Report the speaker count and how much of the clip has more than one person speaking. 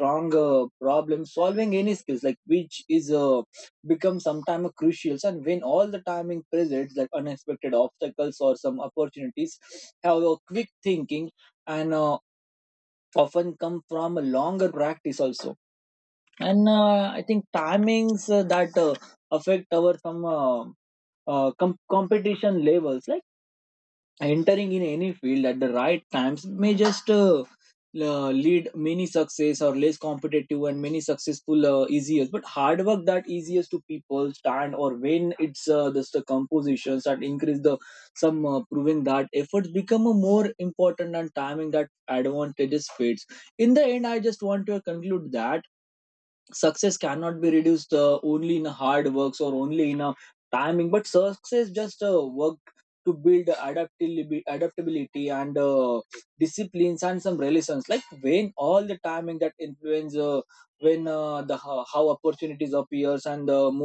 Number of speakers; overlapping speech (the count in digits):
1, no overlap